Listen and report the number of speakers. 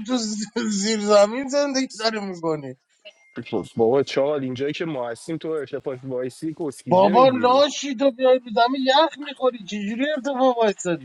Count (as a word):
two